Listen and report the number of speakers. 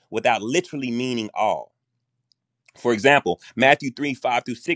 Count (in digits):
1